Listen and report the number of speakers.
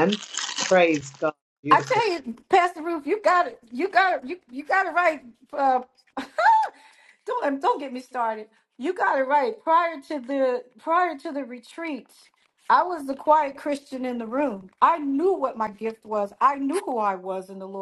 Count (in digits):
2